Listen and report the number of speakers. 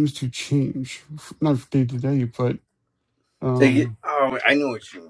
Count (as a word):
two